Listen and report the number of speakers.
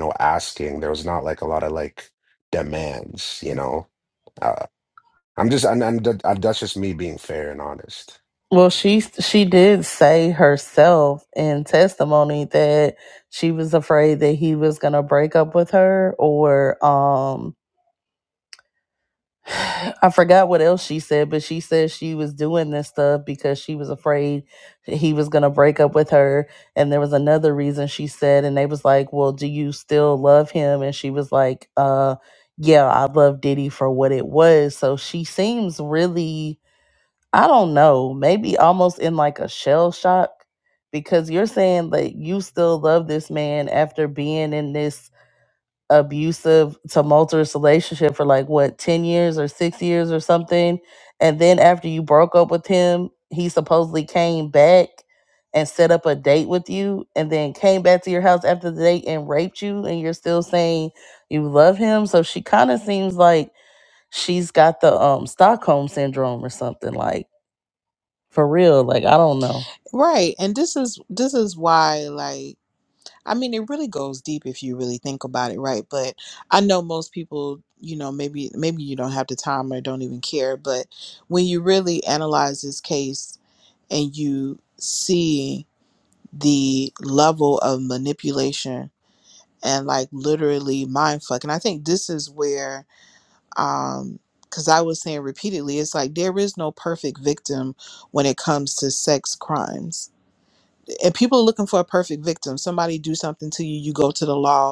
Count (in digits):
3